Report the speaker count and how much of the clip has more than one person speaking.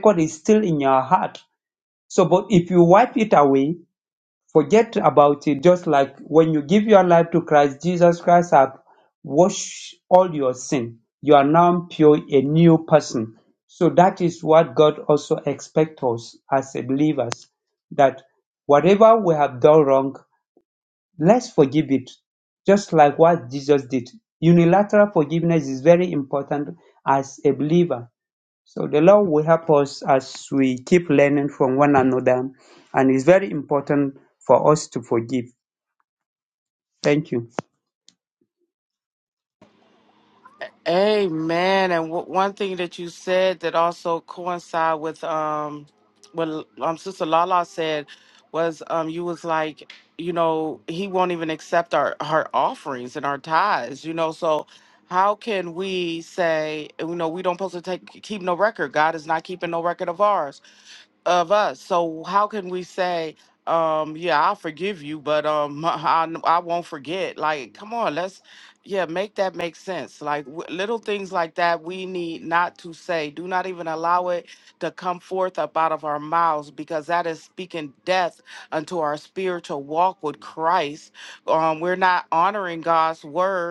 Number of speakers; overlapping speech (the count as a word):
two, no overlap